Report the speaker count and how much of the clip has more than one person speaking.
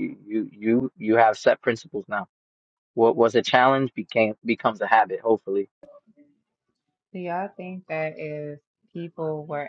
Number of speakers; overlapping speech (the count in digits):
2, no overlap